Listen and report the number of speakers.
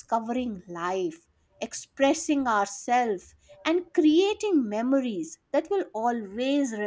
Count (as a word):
one